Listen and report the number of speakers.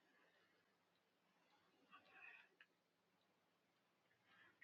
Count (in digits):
0